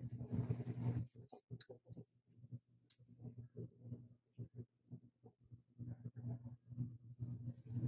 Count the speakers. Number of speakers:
0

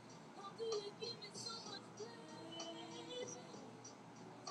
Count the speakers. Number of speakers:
0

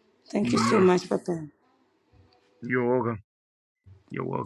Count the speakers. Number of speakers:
2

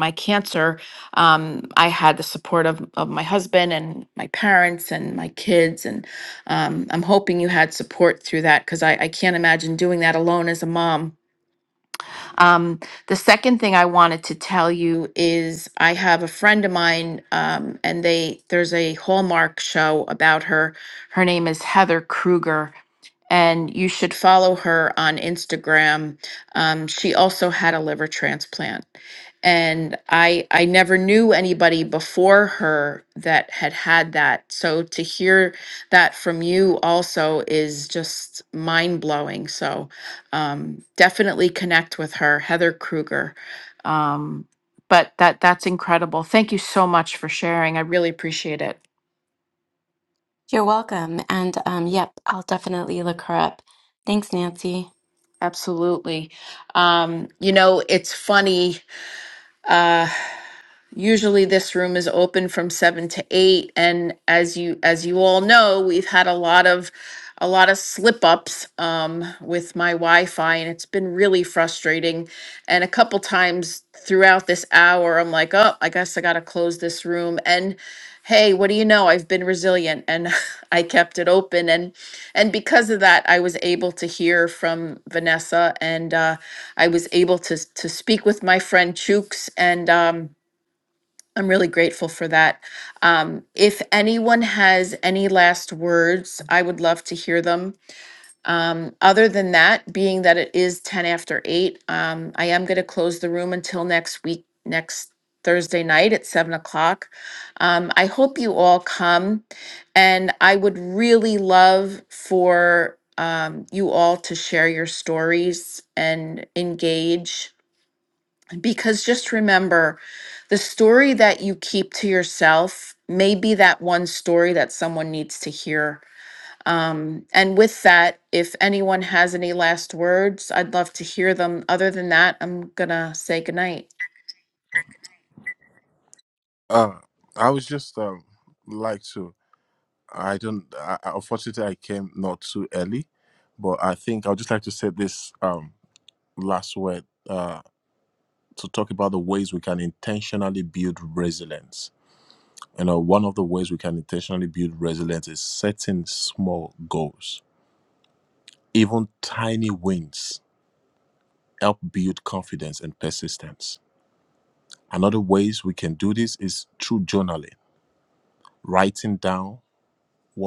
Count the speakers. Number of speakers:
3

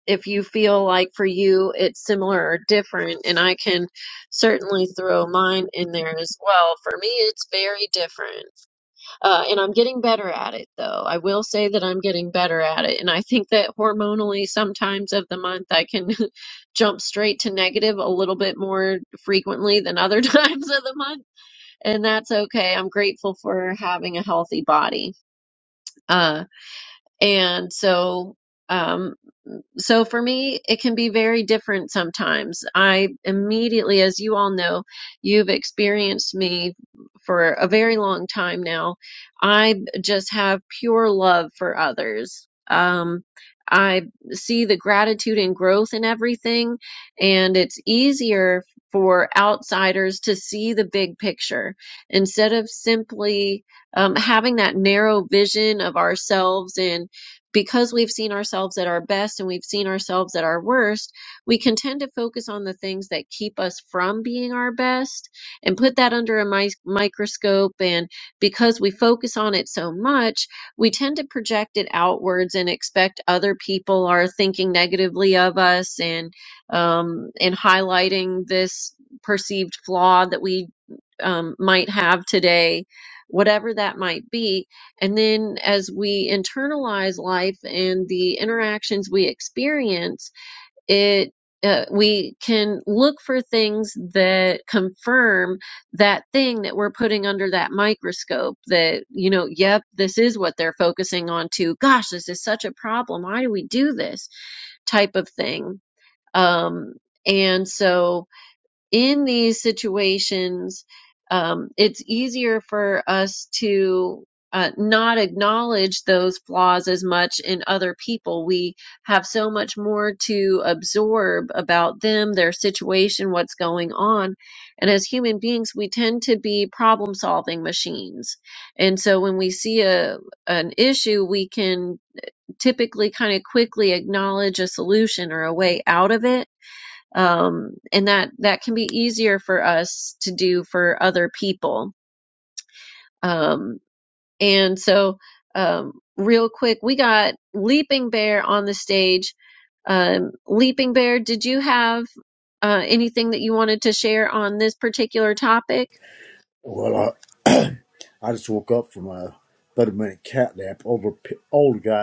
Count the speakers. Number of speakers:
2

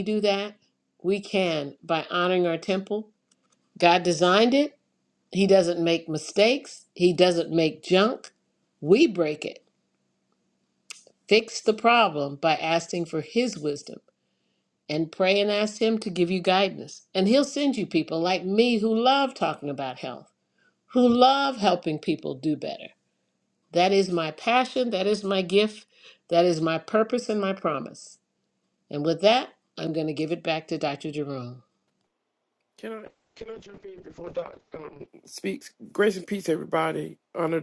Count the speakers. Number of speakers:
2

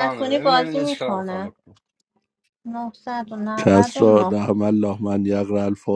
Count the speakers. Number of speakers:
3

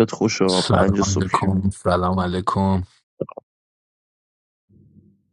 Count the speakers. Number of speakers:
2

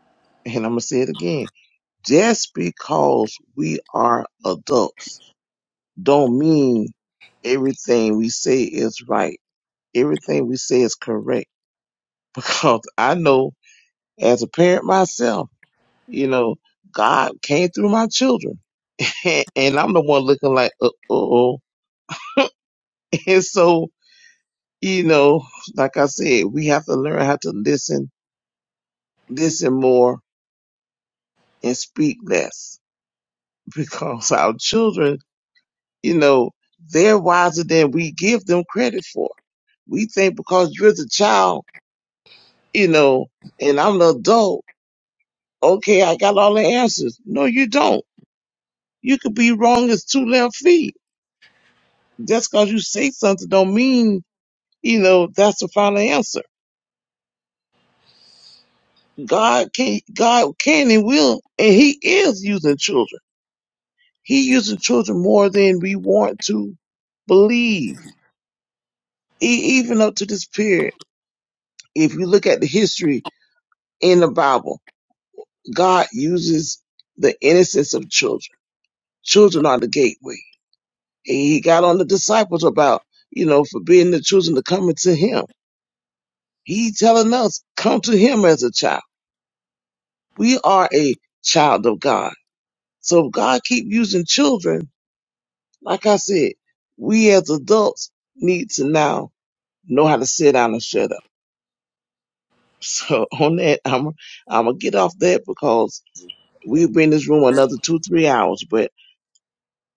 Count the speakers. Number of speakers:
1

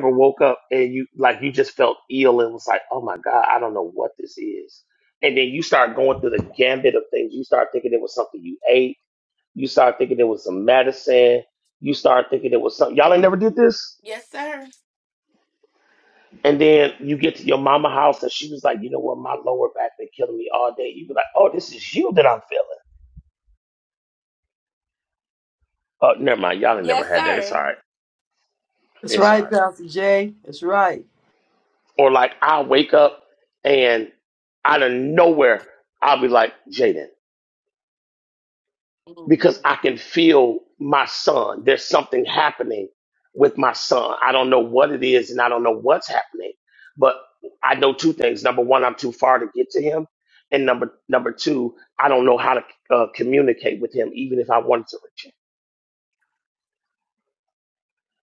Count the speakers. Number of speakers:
3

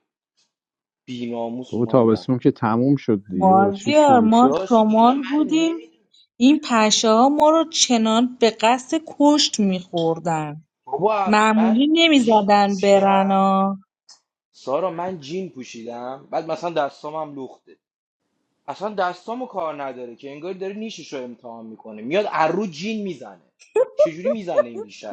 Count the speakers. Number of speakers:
3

